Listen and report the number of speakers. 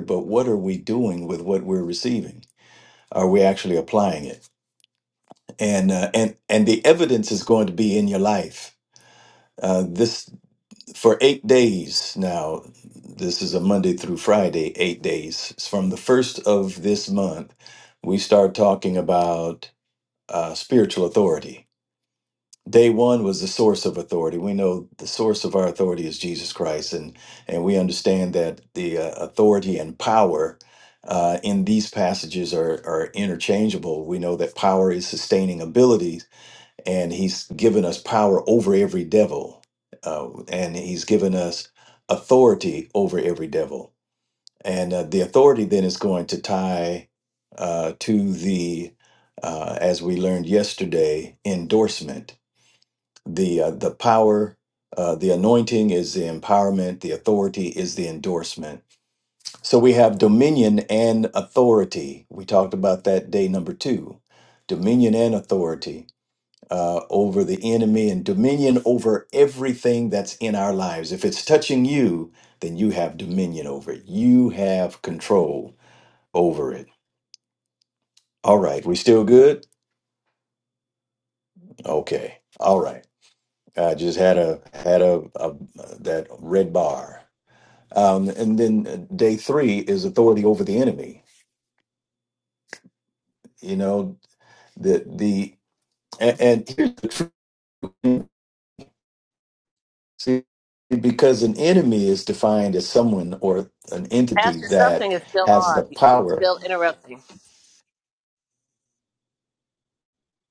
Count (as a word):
two